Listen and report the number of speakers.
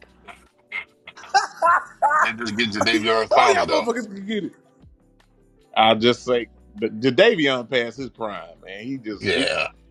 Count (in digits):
3